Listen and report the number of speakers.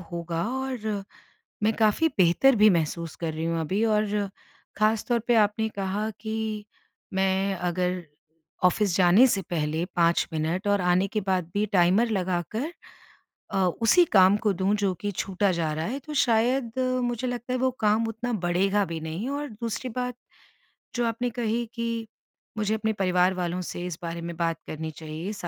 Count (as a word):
one